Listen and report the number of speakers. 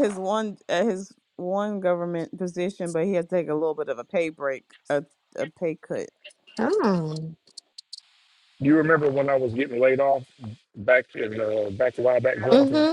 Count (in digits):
3